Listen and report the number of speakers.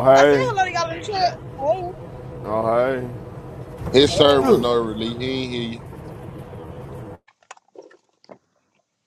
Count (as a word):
three